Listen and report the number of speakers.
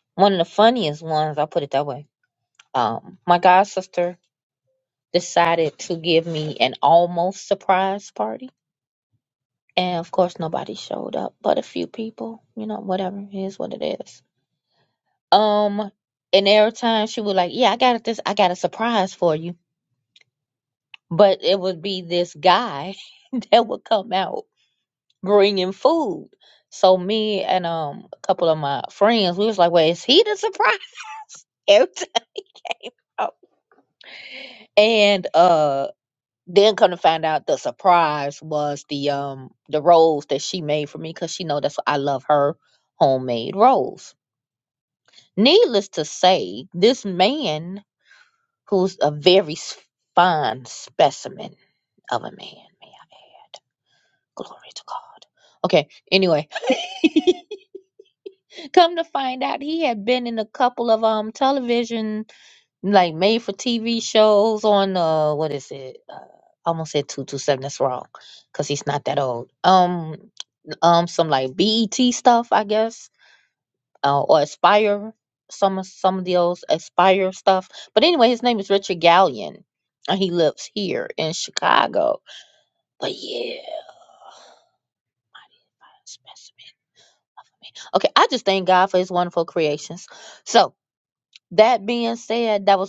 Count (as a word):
one